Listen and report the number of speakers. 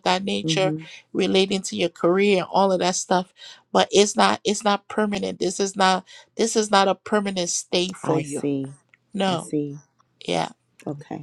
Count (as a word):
two